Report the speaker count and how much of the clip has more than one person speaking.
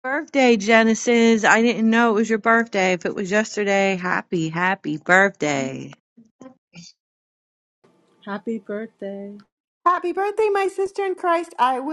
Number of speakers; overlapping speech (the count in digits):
3, no overlap